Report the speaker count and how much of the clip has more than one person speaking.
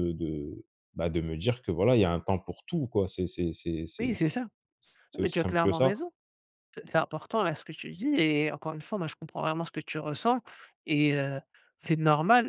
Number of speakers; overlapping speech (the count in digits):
2, about 8%